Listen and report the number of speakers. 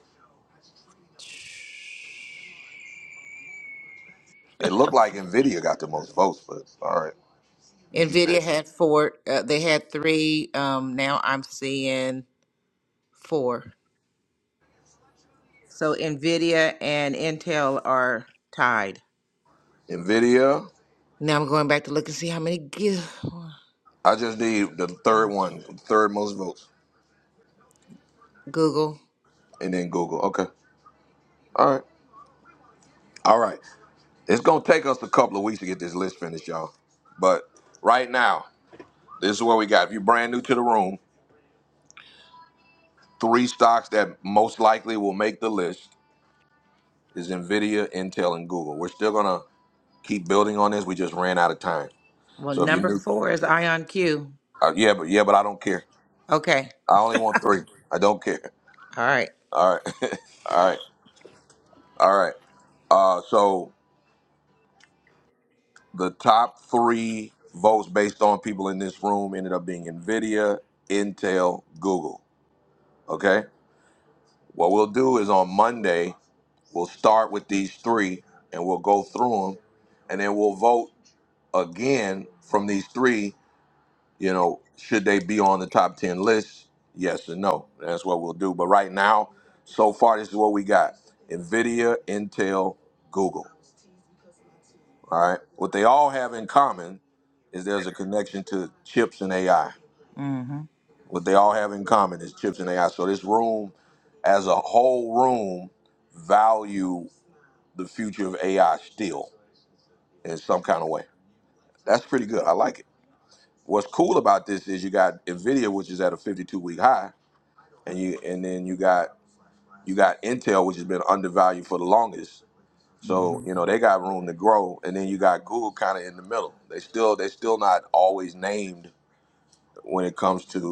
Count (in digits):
2